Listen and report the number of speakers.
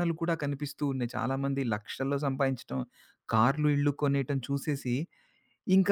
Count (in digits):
1